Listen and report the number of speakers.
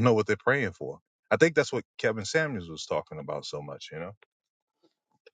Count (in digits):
1